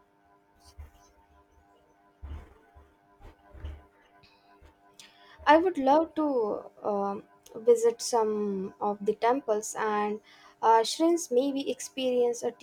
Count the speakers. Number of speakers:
one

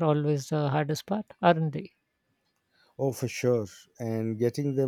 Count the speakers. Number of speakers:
two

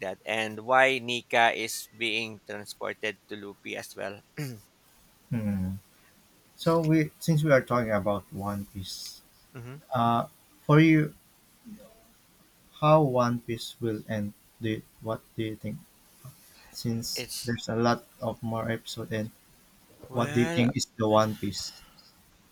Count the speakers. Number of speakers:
two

